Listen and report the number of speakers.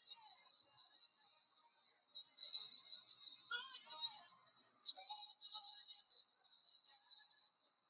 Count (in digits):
0